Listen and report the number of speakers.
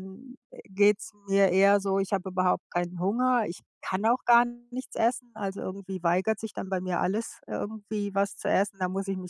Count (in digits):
1